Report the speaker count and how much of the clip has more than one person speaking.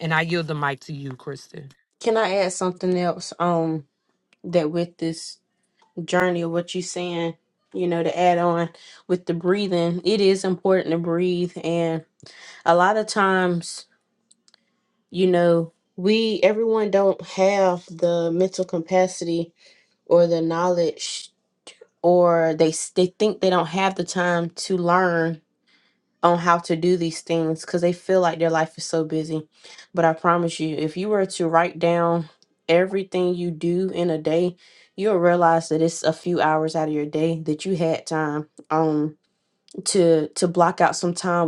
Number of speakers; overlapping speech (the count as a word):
two, no overlap